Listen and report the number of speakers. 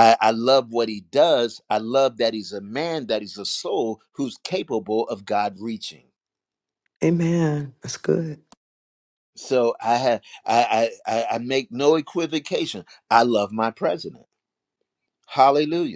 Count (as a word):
two